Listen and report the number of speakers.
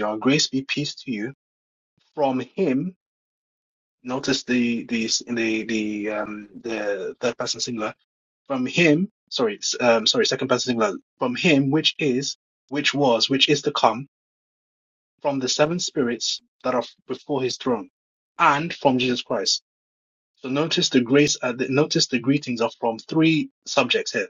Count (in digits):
1